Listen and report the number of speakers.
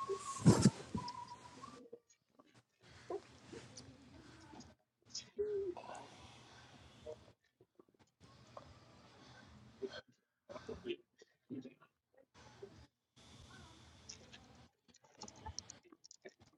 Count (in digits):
0